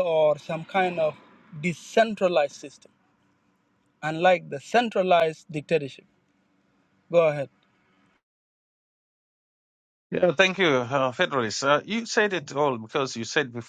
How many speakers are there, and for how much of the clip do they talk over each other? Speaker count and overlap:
2, no overlap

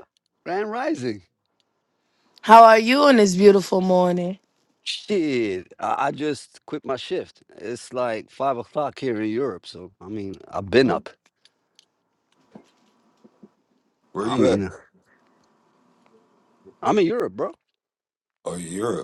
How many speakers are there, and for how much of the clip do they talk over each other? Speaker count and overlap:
3, about 3%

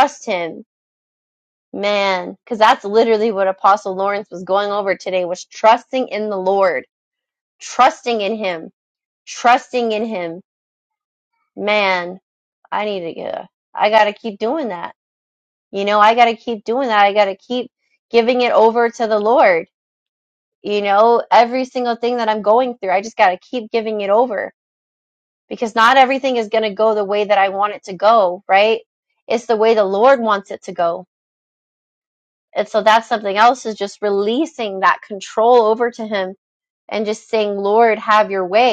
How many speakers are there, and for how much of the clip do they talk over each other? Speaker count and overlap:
1, no overlap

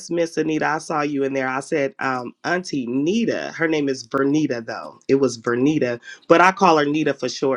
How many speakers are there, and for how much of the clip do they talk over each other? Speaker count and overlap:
1, no overlap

